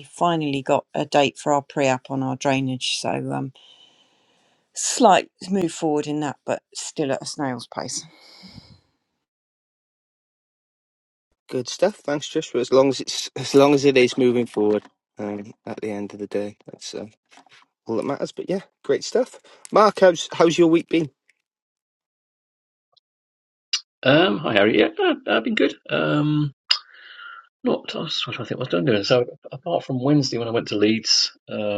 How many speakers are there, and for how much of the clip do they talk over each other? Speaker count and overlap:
3, no overlap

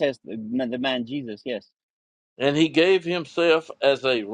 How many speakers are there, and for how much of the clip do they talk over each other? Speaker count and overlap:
2, no overlap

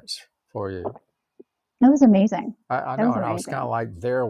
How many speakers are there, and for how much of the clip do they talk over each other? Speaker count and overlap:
2, about 16%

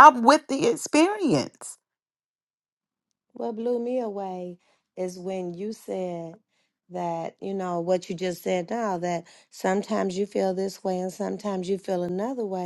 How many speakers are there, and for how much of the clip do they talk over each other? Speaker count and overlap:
2, no overlap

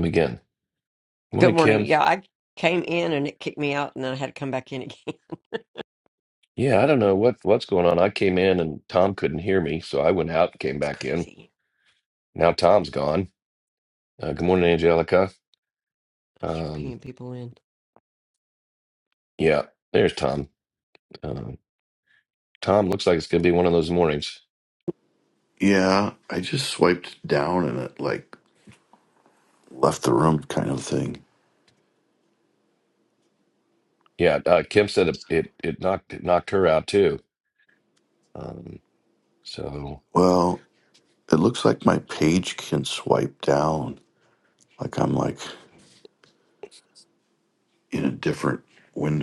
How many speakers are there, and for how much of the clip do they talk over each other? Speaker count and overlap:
3, about 2%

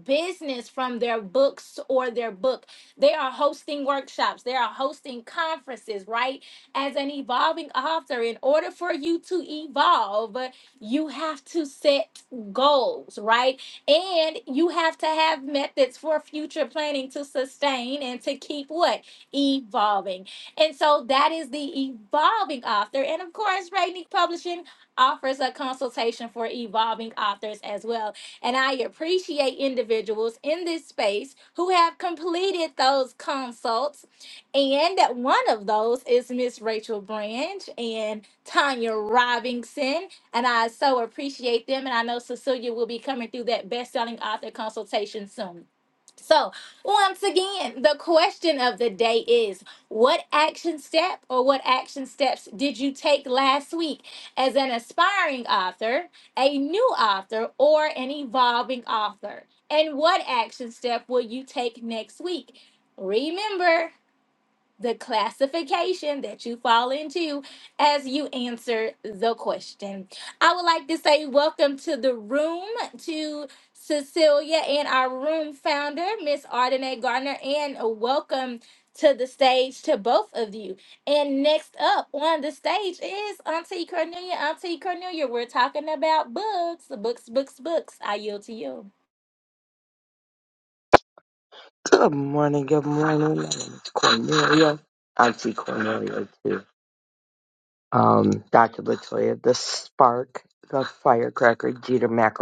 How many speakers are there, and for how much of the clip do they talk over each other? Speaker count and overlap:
2, no overlap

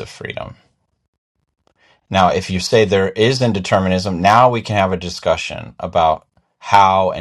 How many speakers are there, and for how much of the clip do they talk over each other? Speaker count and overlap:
1, no overlap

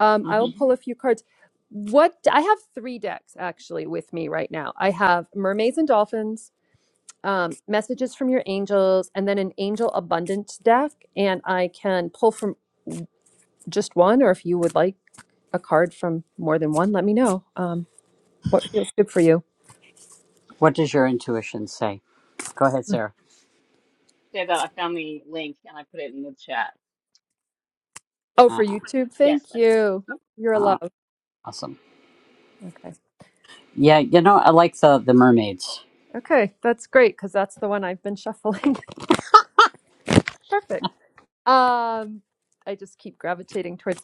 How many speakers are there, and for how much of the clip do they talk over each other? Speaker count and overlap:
3, about 3%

